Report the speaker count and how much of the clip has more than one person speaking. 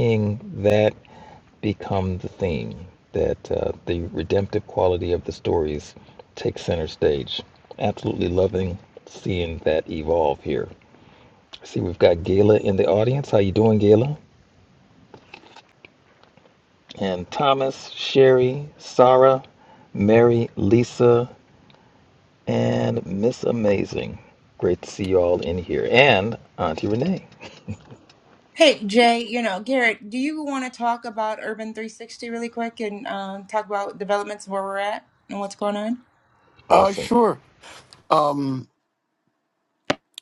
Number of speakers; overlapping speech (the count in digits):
3, about 1%